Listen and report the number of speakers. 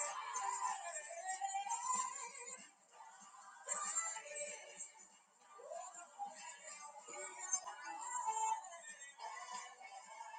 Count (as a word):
zero